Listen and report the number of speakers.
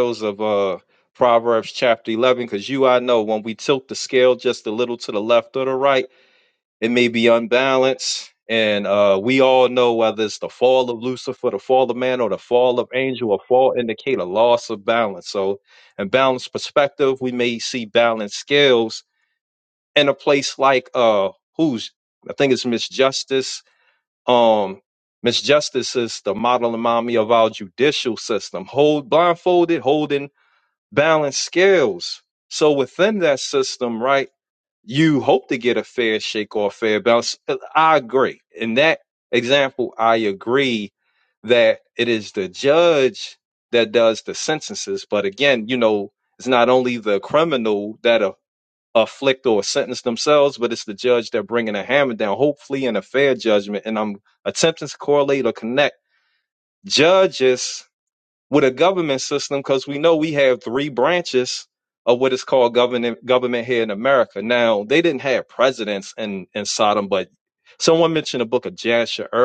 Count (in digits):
1